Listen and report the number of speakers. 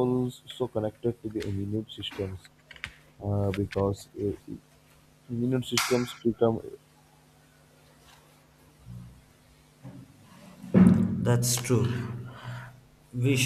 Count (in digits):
2